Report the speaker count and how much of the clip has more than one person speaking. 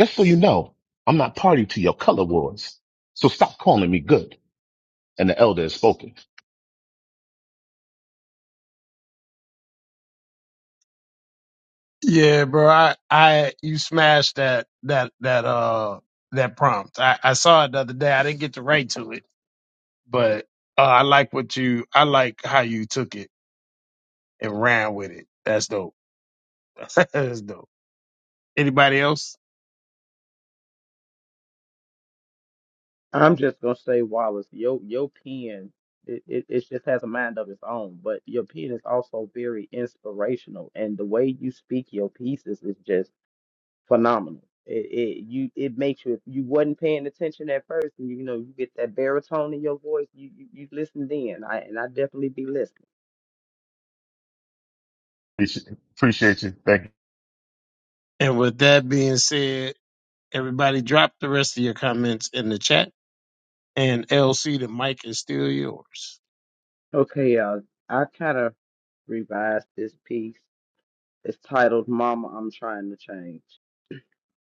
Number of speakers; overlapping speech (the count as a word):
three, no overlap